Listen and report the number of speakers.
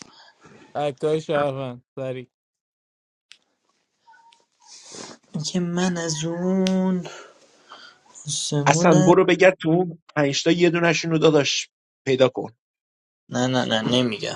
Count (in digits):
3